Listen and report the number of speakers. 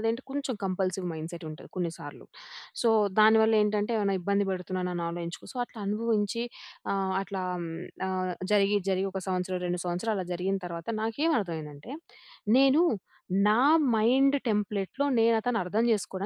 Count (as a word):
one